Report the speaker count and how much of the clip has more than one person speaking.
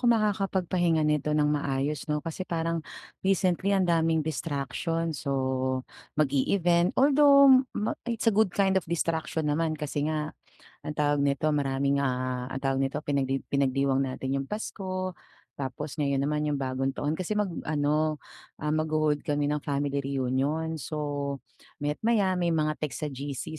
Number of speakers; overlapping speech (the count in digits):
1, no overlap